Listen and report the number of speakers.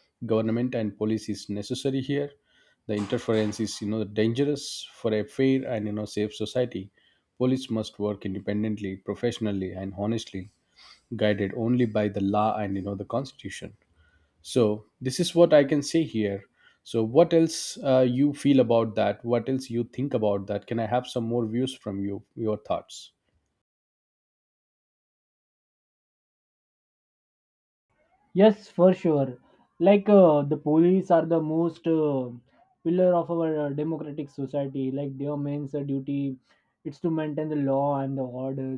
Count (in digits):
2